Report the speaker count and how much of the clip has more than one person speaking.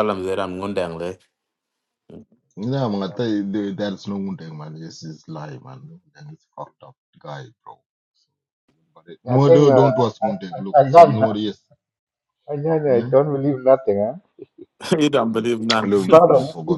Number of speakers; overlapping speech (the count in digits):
3, about 13%